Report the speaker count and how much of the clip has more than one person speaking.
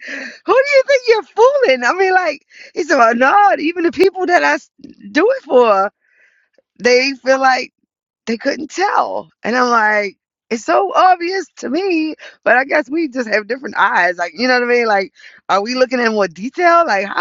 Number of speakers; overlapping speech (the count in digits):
1, no overlap